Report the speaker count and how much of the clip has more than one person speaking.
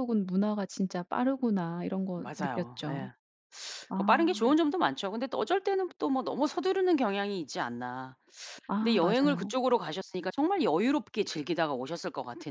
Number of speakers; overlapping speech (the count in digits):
2, about 16%